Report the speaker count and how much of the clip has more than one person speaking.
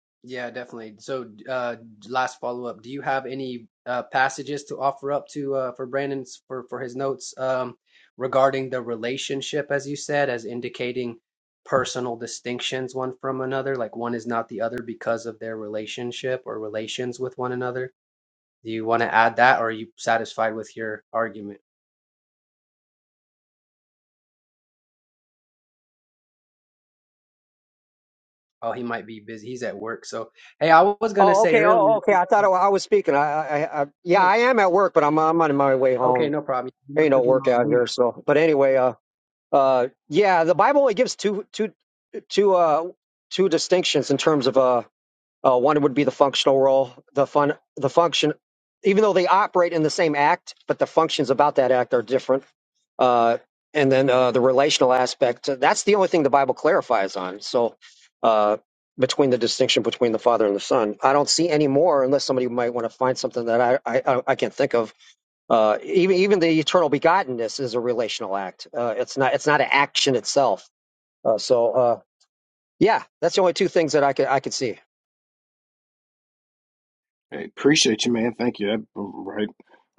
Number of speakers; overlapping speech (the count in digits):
3, about 2%